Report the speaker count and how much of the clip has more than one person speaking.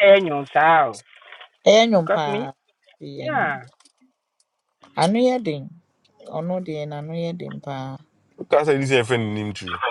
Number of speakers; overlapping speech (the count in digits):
3, about 7%